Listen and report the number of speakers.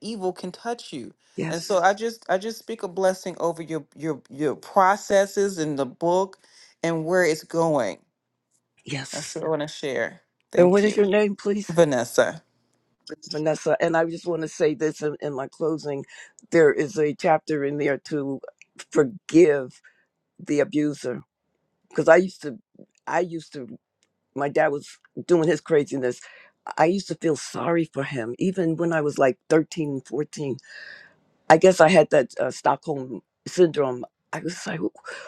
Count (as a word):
two